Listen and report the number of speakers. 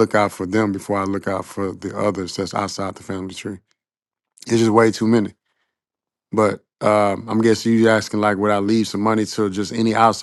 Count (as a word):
one